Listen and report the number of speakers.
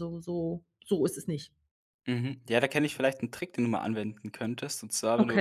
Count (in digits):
2